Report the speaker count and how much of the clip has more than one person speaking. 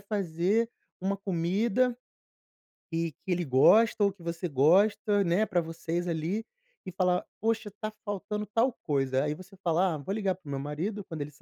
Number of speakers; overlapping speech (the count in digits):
1, no overlap